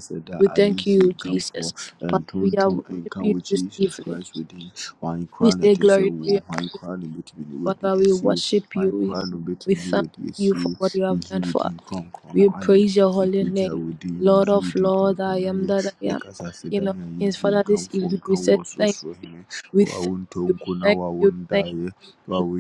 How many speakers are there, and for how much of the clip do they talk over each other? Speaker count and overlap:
2, about 65%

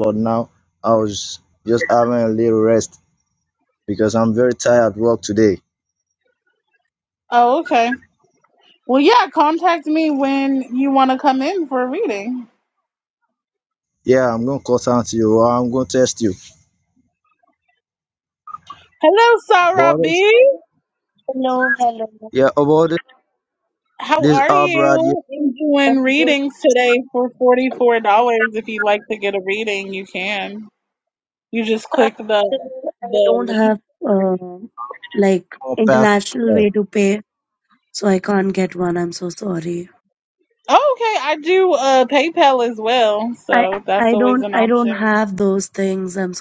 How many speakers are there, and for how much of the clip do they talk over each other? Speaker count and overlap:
3, about 9%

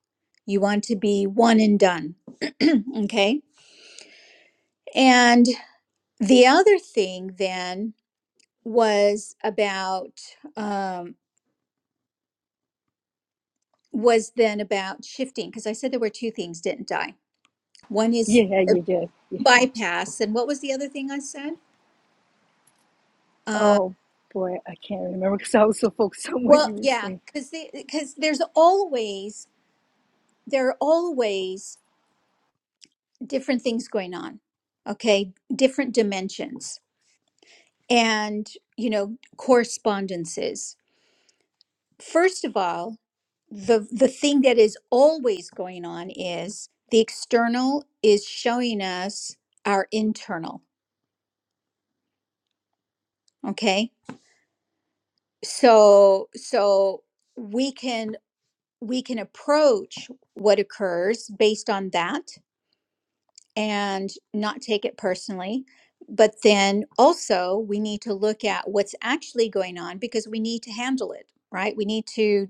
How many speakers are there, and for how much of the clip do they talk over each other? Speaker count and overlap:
2, about 1%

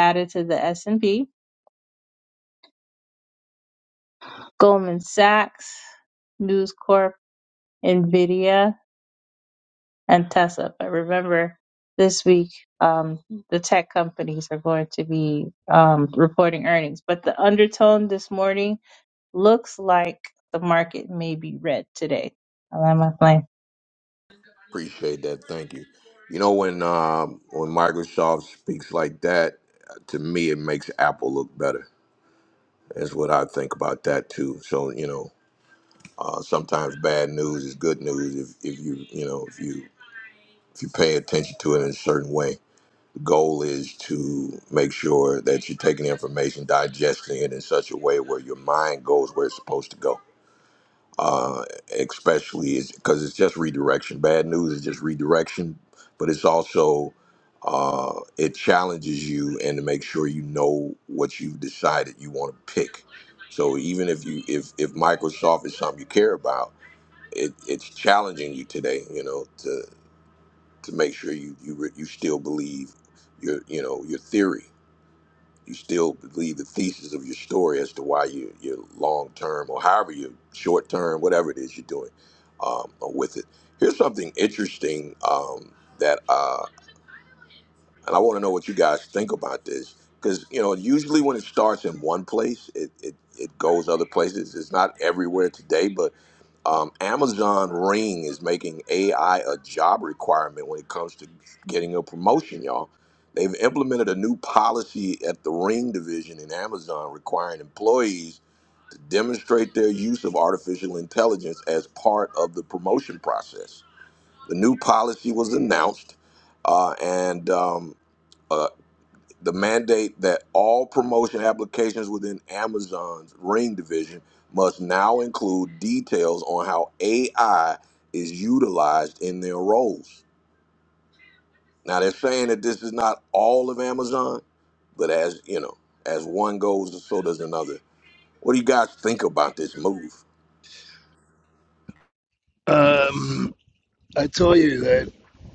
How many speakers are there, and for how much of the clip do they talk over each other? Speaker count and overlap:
3, no overlap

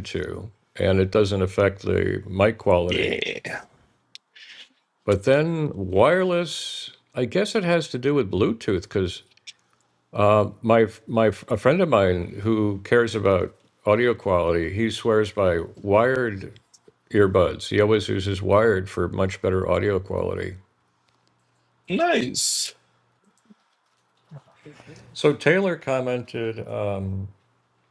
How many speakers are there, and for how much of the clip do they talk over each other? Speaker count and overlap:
2, about 1%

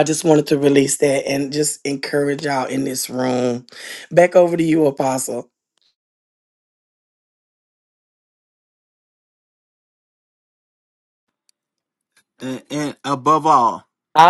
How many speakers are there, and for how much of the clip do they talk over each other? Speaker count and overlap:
2, no overlap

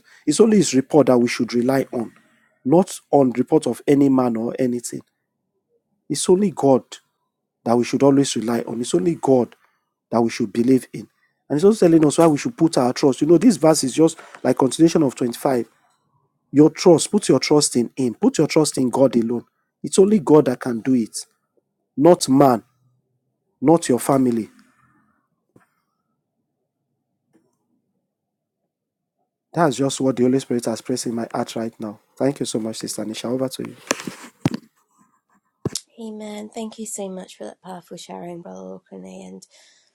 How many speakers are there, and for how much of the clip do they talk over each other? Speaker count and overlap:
2, no overlap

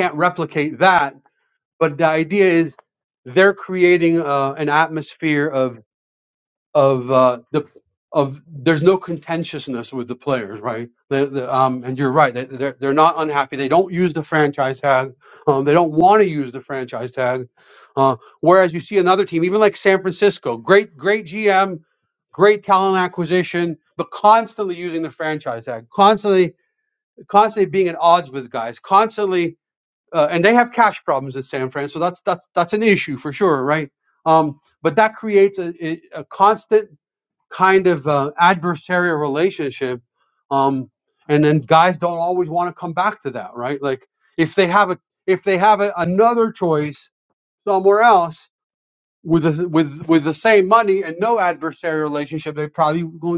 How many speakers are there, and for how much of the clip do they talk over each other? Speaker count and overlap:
1, no overlap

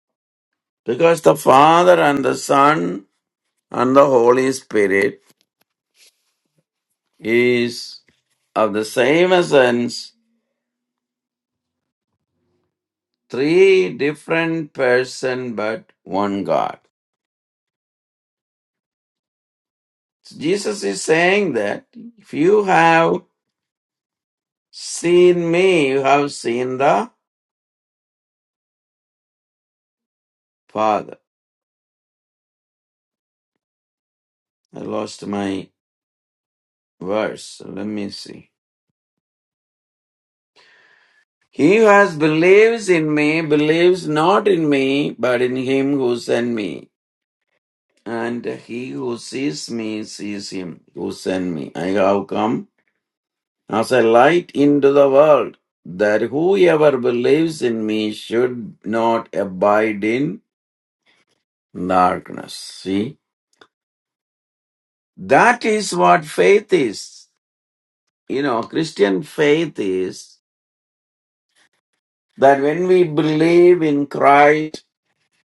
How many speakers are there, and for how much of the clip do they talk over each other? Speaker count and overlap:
1, no overlap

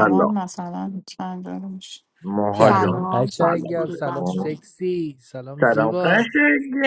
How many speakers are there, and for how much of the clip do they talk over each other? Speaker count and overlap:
3, about 44%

